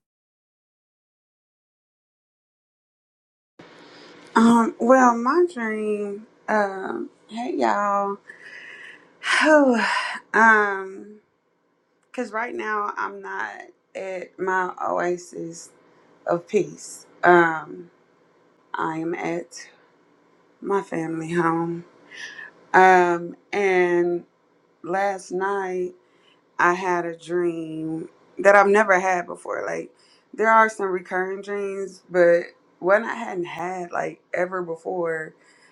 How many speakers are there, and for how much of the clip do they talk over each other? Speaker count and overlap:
1, no overlap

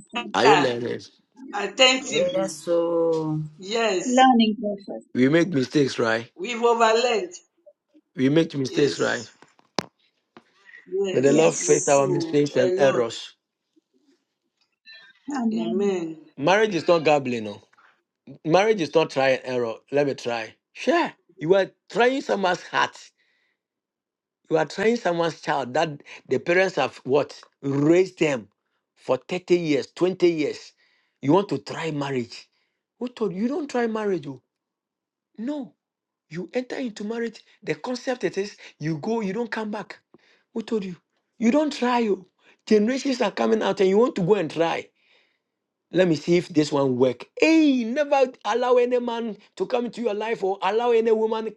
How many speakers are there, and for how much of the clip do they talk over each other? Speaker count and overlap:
4, about 7%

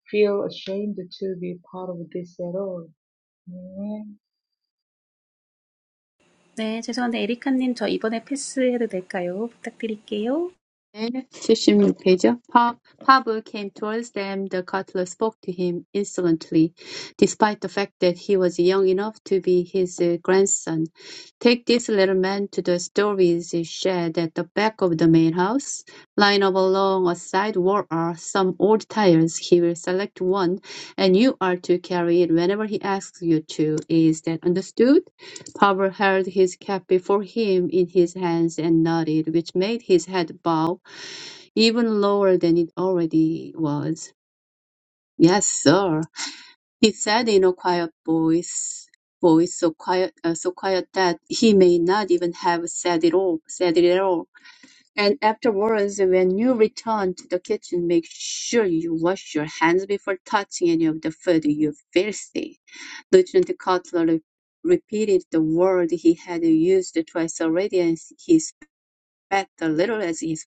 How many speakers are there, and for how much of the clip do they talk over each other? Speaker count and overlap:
3, no overlap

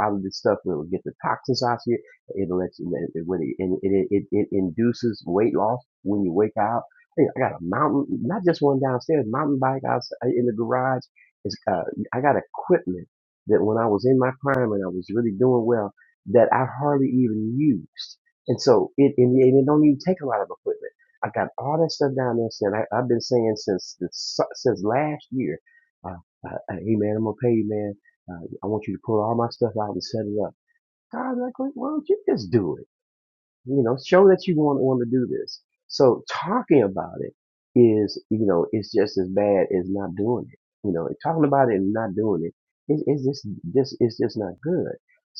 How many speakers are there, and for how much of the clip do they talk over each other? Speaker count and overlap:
1, no overlap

